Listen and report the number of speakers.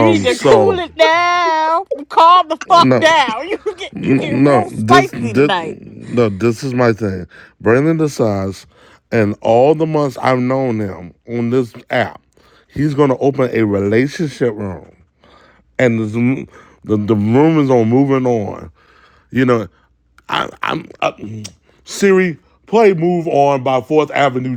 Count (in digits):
2